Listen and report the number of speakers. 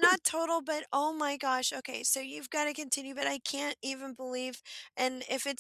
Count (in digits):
1